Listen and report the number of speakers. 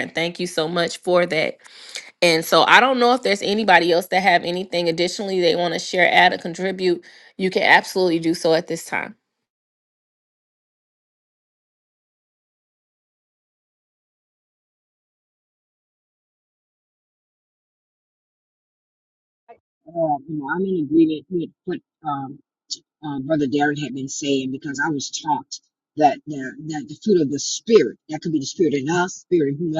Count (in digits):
2